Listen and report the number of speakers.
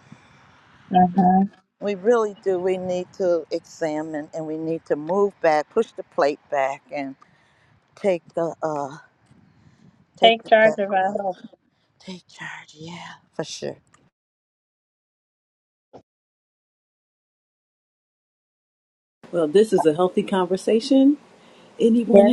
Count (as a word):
three